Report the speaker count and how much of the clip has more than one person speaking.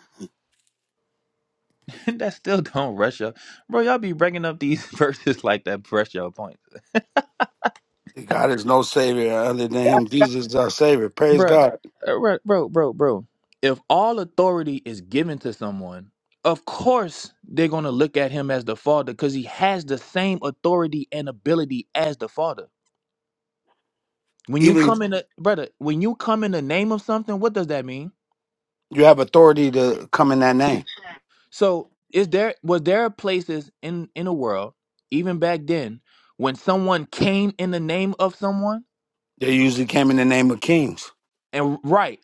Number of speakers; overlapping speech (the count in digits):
2, about 1%